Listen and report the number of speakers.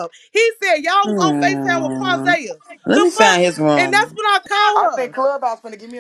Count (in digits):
3